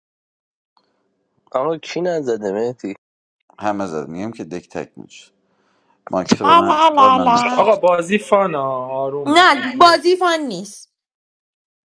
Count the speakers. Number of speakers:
4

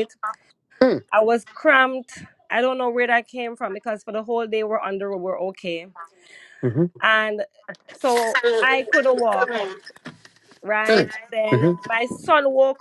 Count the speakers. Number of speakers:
2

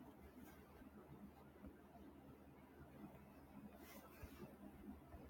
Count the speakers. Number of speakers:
0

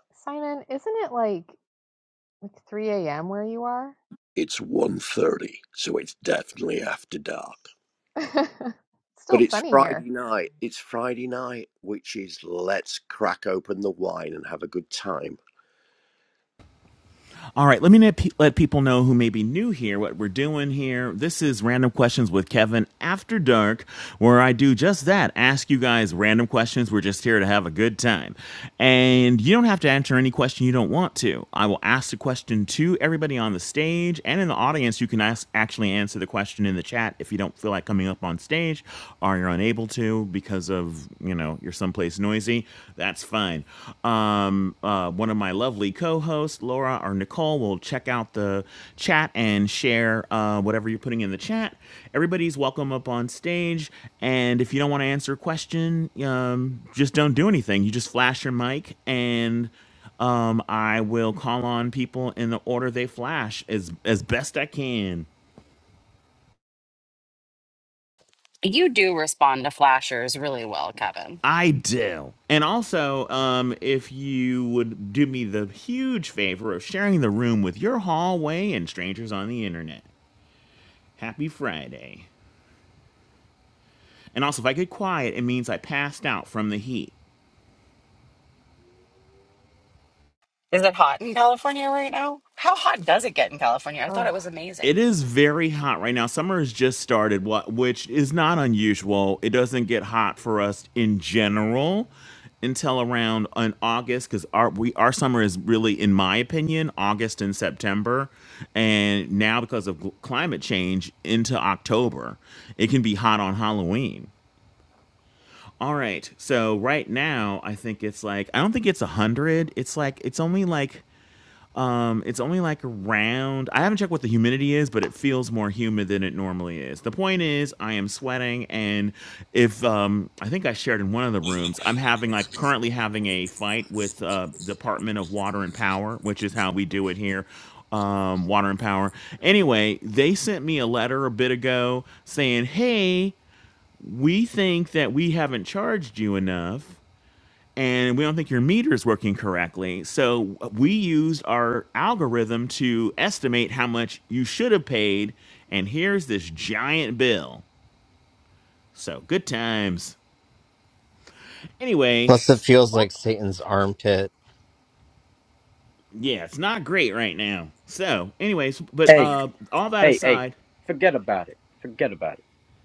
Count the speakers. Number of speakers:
6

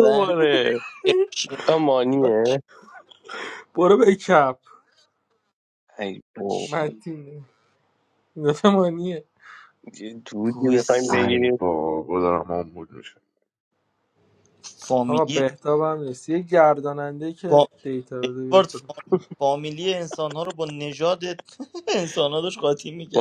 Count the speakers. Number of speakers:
4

